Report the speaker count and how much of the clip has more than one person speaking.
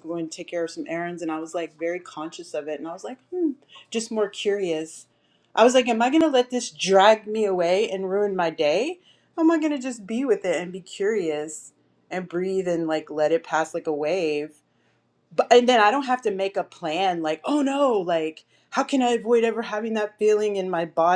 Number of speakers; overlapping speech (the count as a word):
one, no overlap